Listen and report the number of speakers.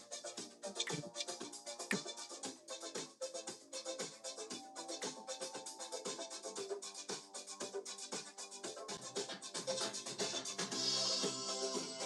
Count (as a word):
zero